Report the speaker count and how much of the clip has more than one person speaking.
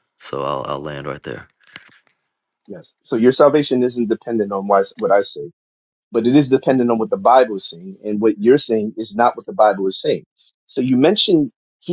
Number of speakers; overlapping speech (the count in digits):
2, no overlap